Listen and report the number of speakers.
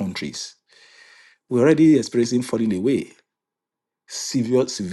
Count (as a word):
one